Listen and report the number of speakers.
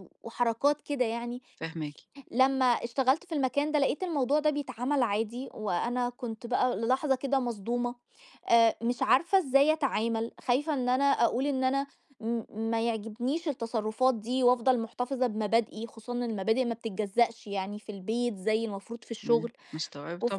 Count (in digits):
2